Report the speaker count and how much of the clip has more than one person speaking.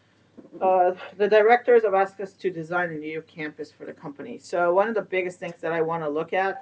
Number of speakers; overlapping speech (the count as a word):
one, no overlap